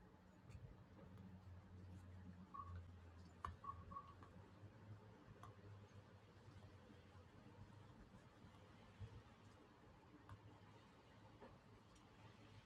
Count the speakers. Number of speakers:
zero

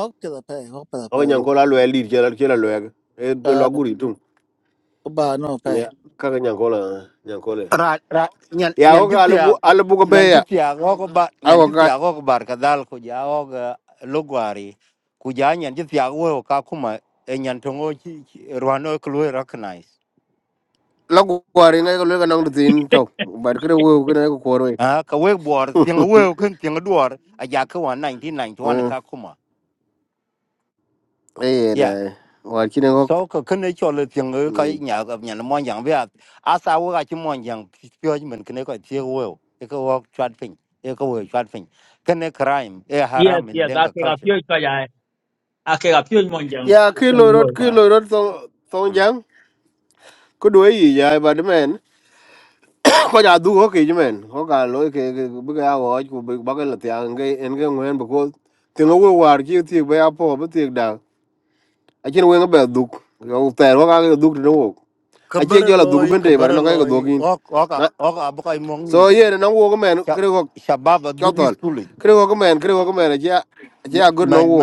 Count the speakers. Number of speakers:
four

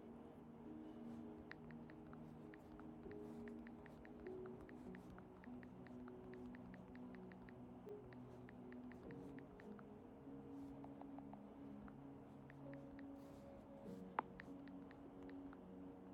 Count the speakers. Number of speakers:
zero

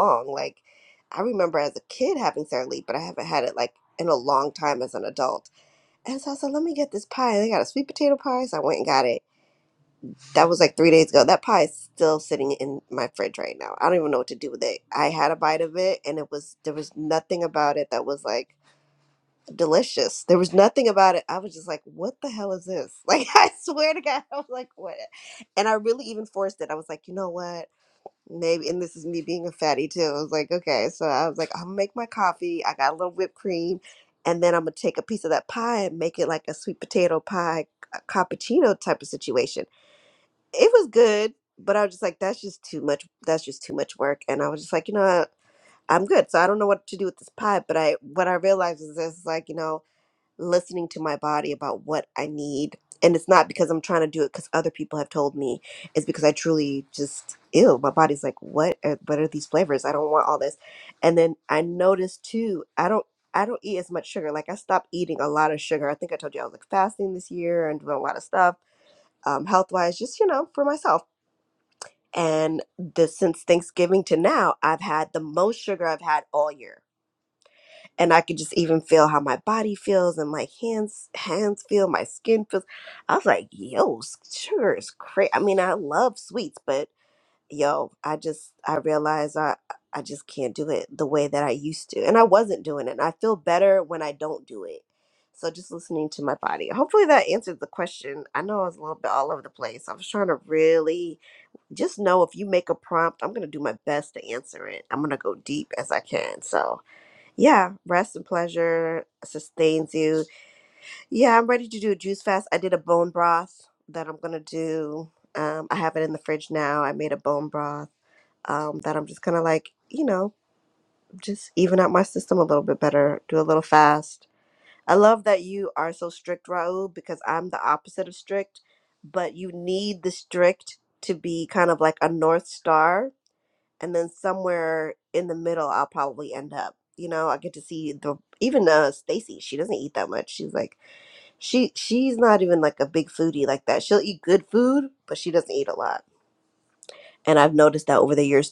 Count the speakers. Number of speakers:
one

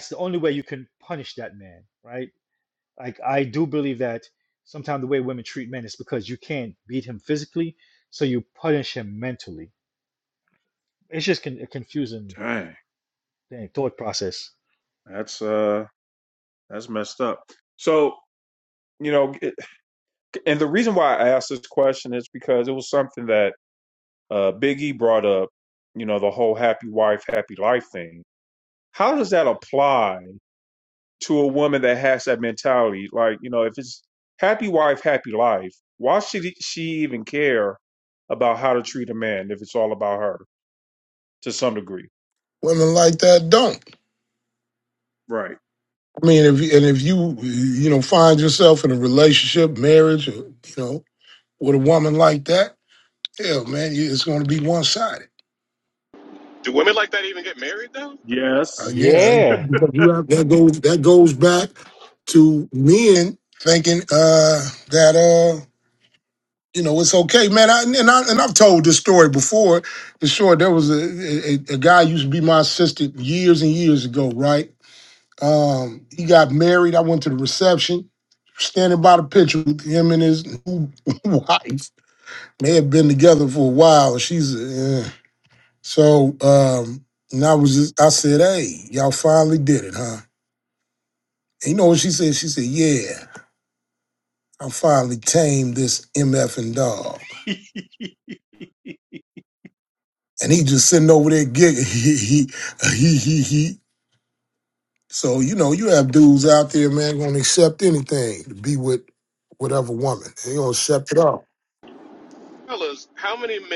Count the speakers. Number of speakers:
four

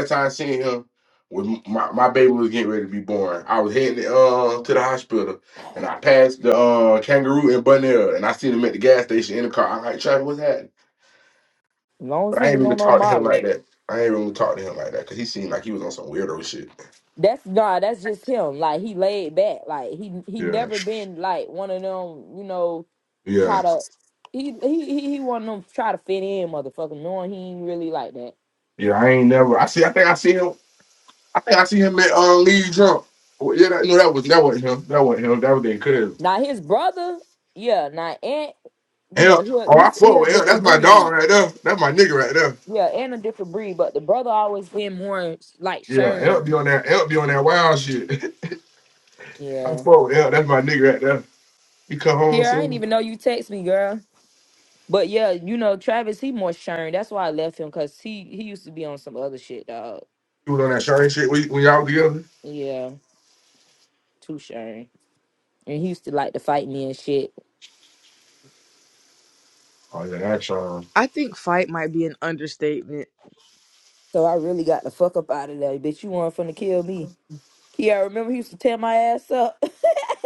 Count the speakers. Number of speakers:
three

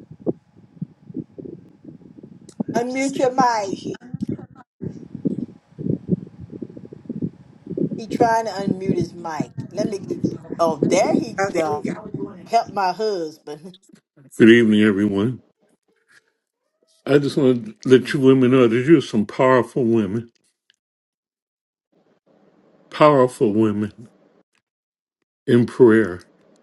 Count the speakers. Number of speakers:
three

